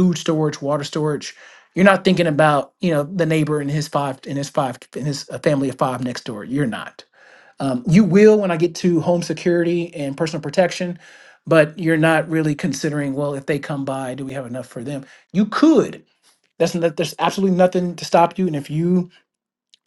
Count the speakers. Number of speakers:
1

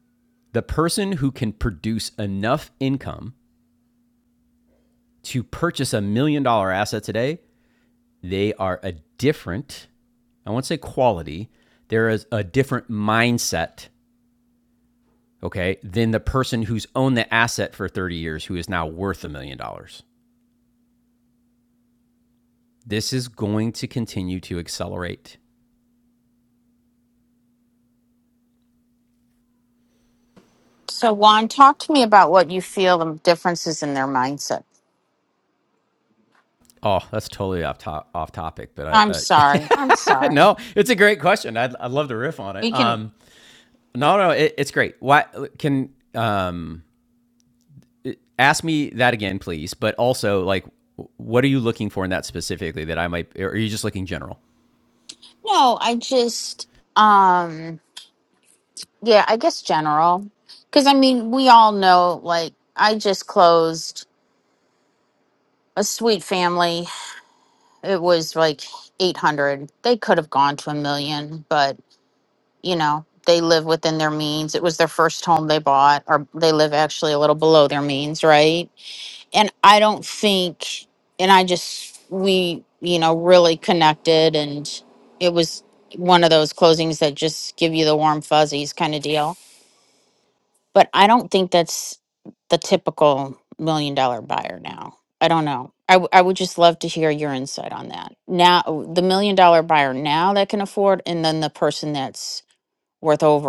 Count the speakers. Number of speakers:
2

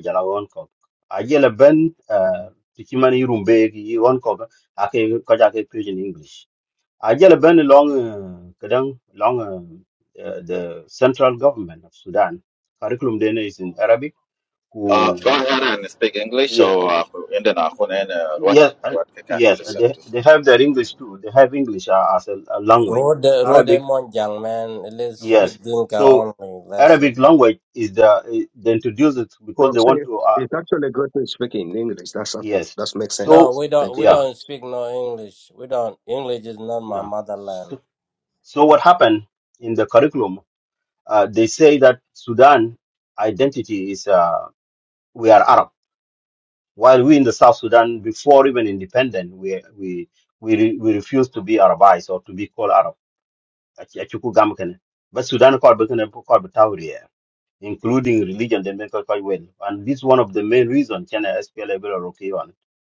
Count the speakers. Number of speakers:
4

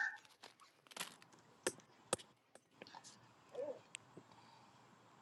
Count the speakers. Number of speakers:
0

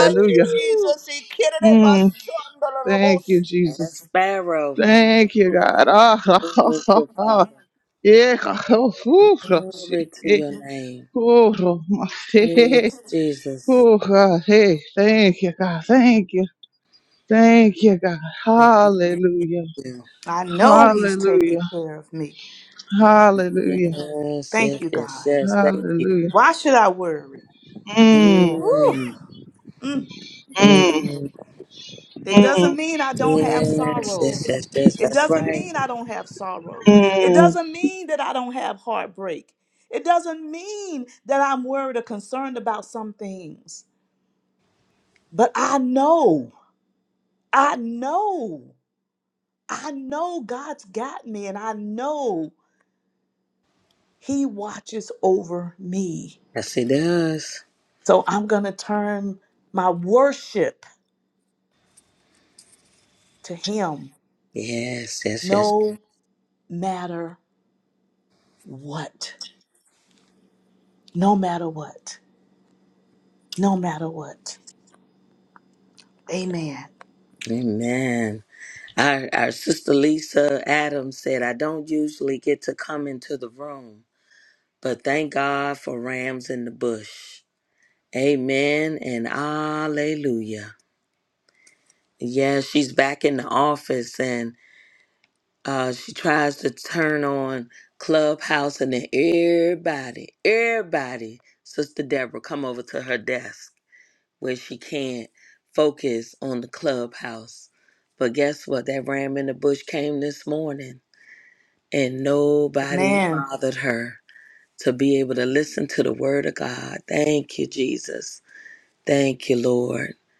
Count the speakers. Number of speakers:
4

